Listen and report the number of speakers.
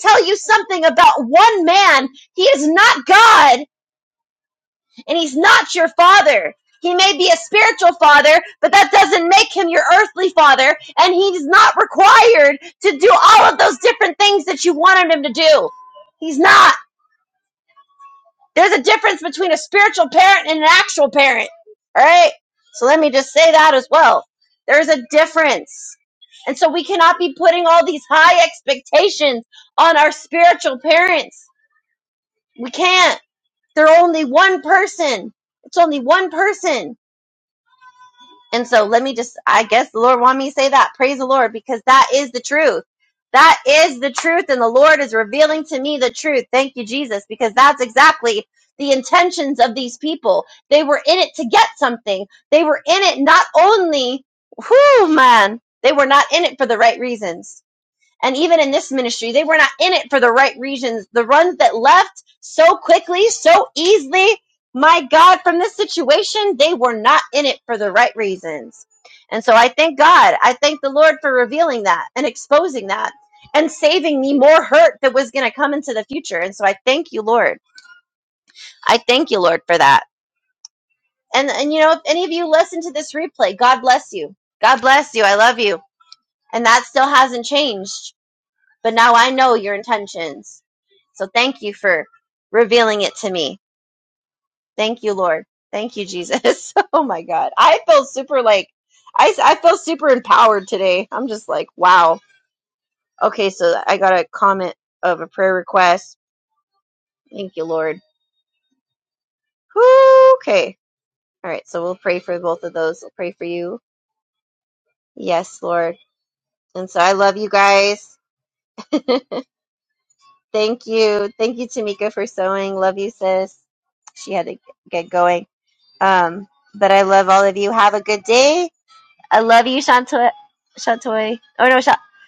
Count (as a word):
one